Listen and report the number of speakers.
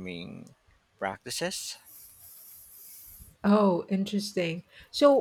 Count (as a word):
two